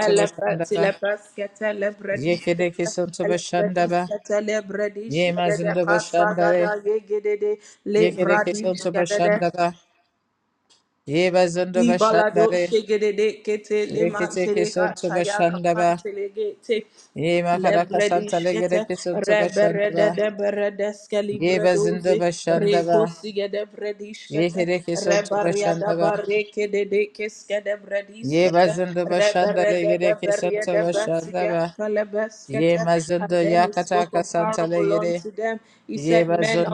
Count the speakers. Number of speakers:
two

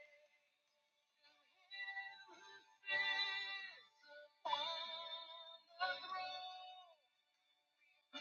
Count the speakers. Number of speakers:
zero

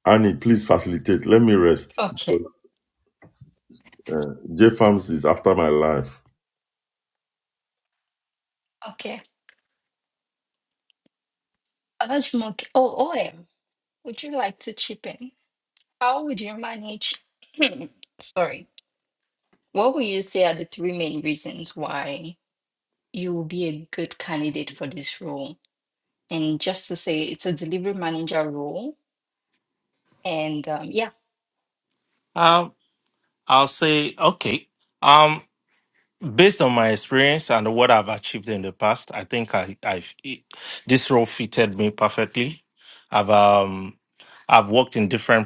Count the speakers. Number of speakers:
three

